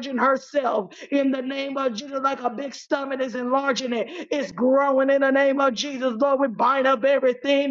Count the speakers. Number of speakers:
one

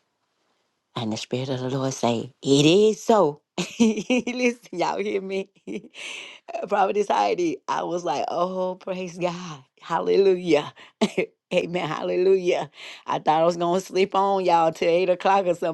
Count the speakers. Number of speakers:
one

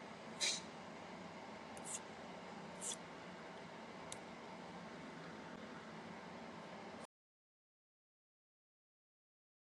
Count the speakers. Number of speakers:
zero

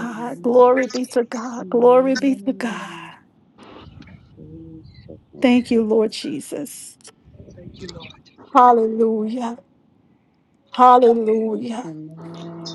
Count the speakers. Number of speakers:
three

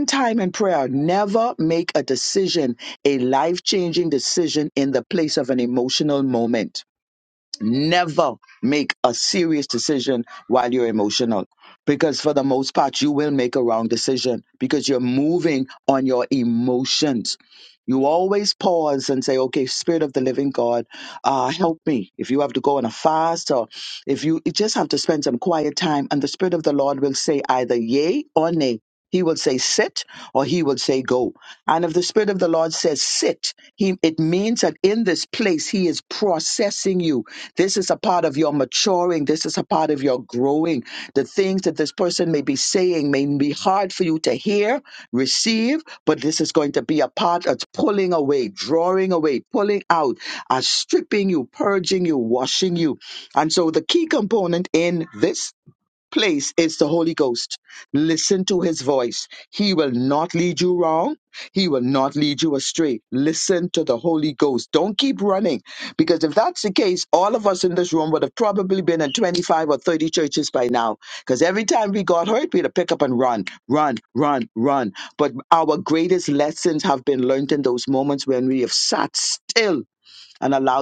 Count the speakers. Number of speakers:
one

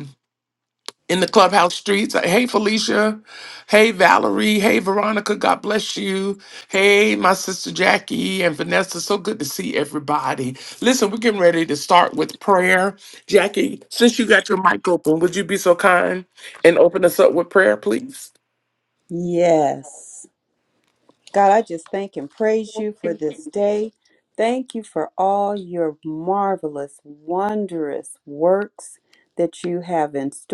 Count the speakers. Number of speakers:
two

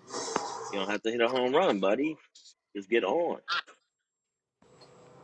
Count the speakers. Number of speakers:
one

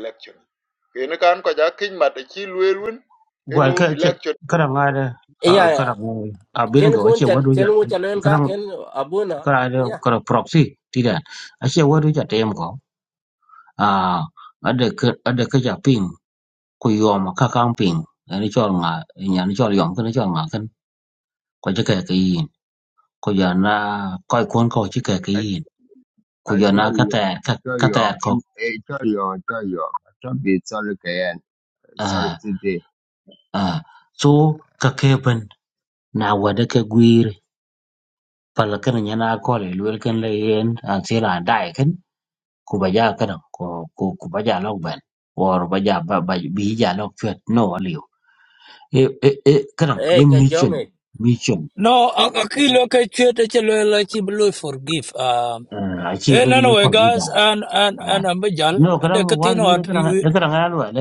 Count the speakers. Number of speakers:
five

